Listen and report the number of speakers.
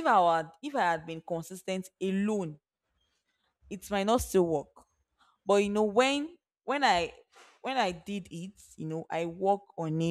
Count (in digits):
1